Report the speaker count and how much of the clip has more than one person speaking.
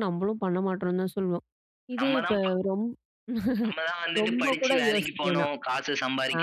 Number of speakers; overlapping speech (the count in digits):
2, about 31%